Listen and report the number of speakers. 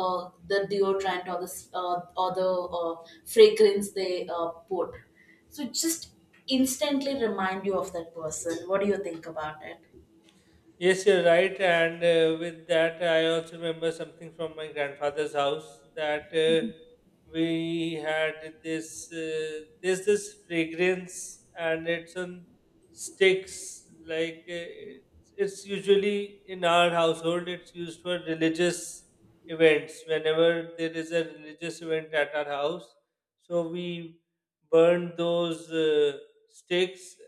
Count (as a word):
two